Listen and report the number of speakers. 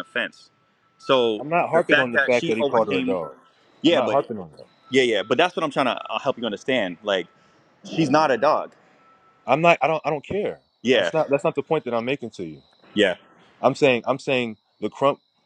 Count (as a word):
two